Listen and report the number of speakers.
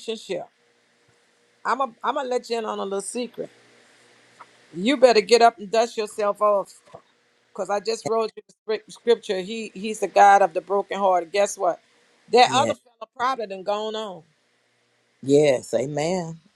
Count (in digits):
2